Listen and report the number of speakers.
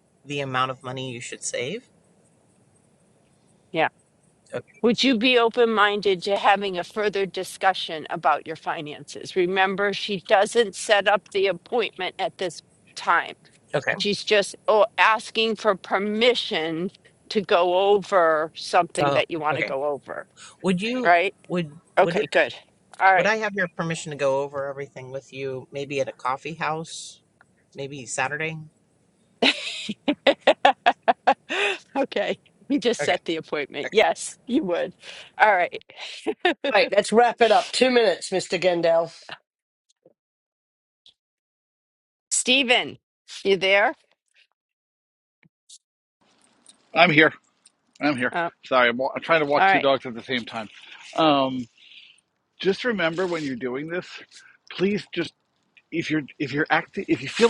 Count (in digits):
4